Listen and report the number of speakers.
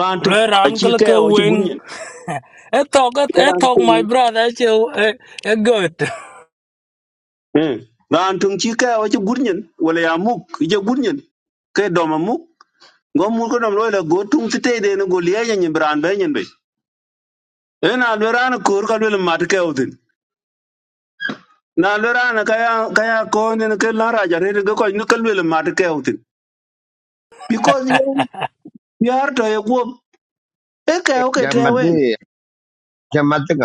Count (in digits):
3